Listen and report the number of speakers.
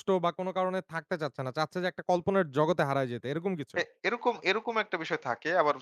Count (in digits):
2